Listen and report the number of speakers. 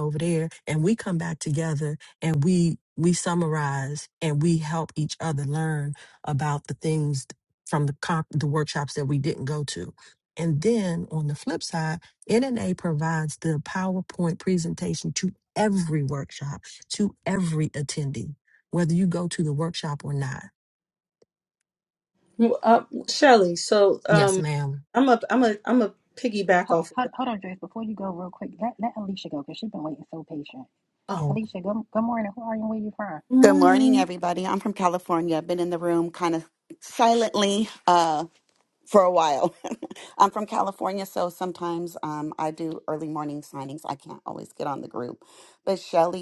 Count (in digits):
4